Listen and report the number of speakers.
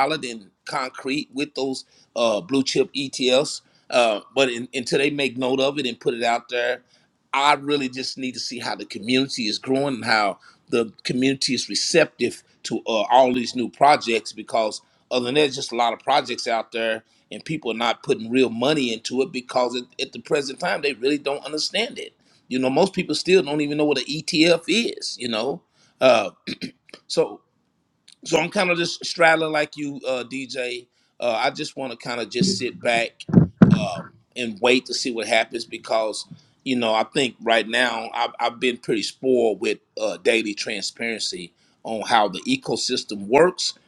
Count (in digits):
1